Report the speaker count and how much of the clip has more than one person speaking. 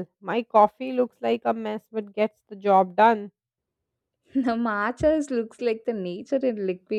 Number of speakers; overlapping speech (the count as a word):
two, no overlap